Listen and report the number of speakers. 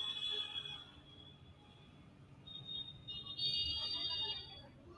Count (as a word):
zero